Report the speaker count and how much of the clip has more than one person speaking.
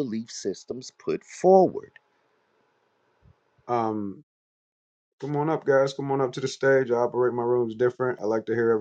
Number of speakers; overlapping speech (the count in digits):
2, no overlap